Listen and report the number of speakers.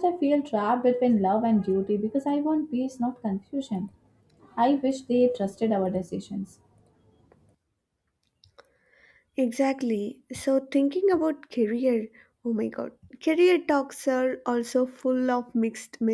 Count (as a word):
two